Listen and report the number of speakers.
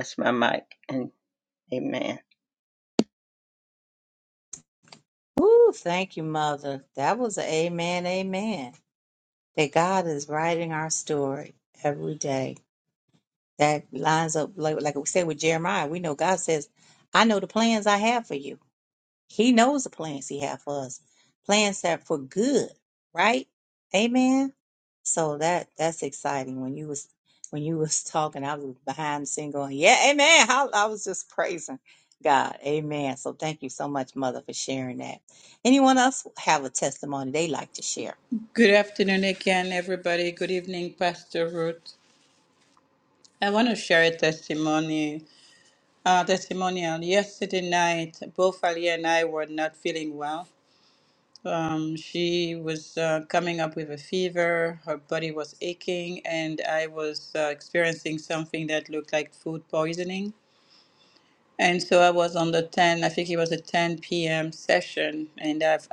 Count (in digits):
3